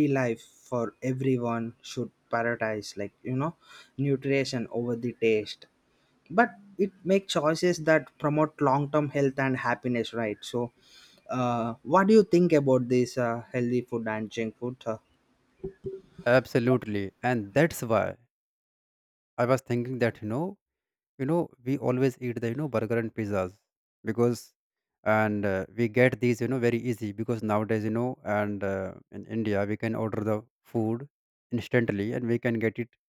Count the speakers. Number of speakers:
2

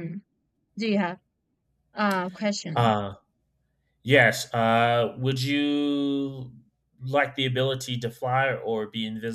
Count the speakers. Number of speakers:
2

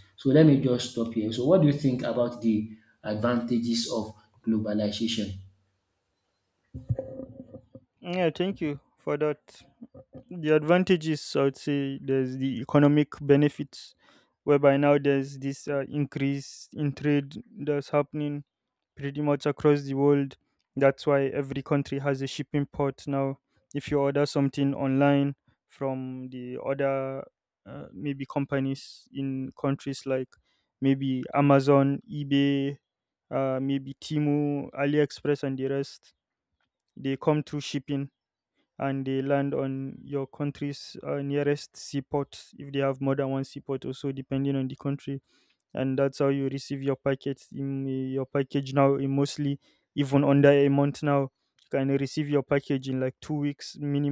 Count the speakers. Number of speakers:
2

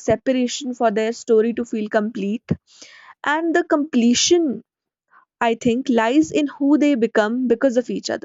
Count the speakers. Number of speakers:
1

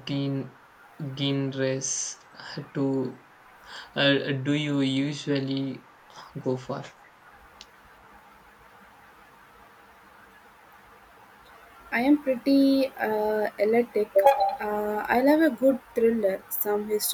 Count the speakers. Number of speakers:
2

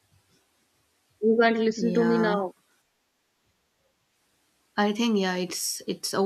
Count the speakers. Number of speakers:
2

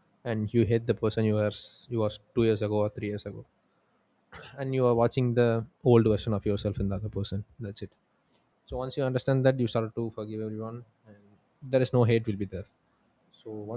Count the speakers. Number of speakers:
1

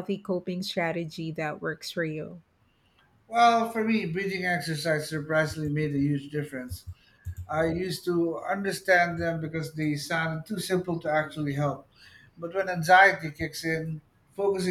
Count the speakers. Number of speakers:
2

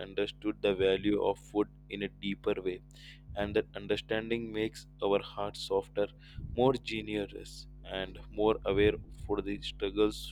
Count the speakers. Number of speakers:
1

